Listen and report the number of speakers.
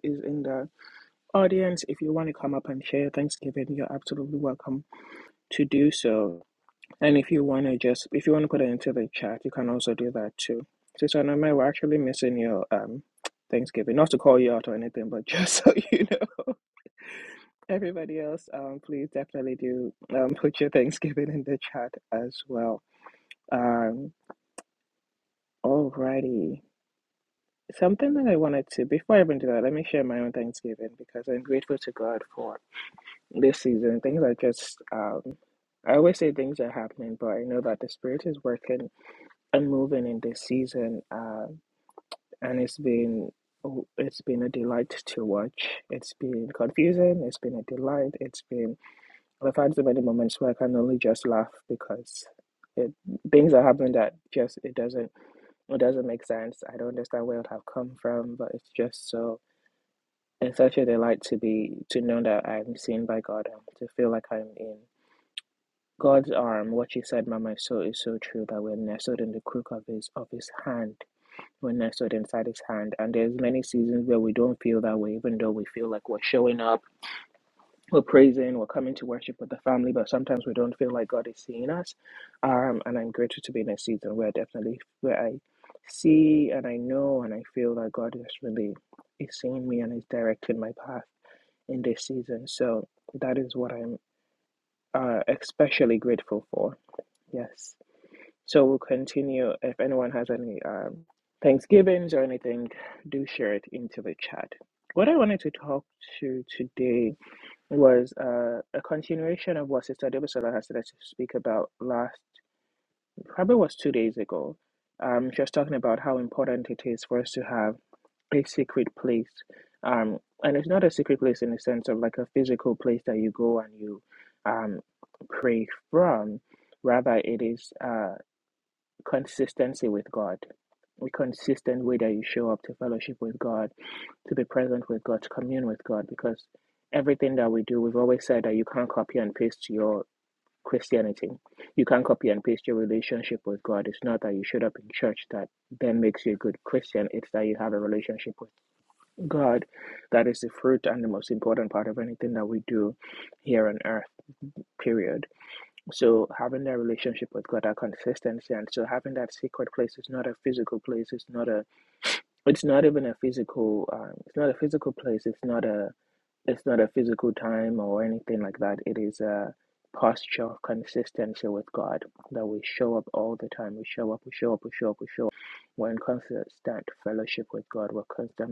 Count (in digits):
1